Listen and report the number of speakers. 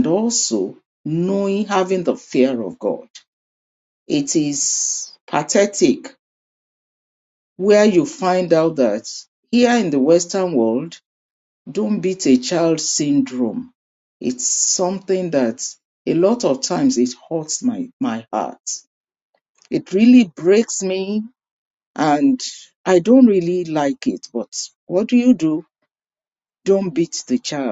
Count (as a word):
one